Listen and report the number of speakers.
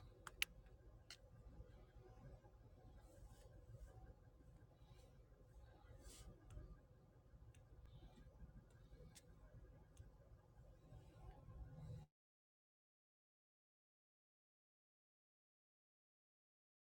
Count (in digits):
0